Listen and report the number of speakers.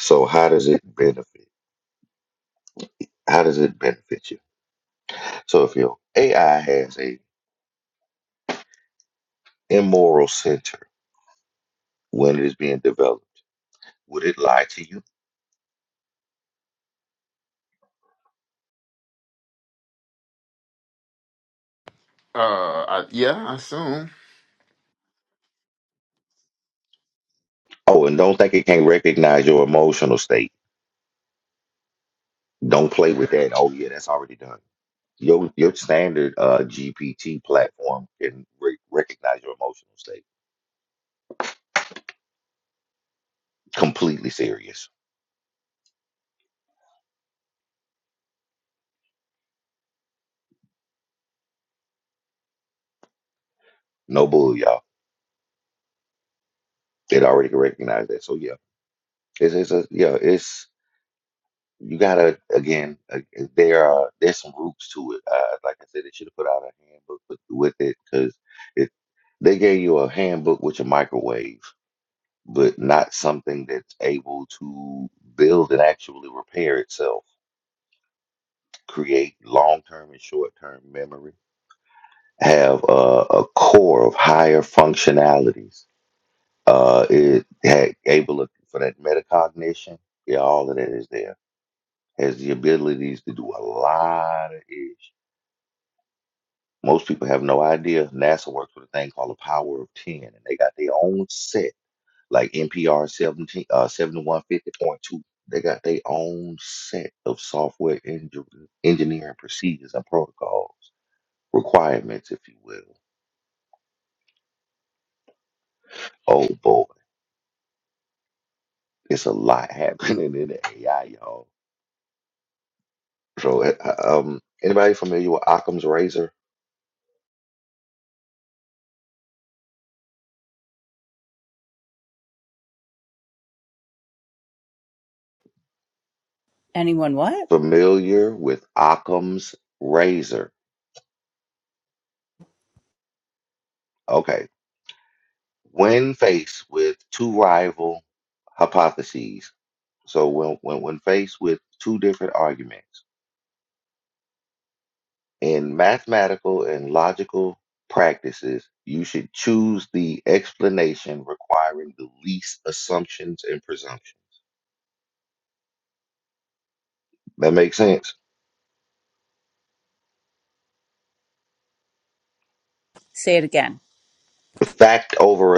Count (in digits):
3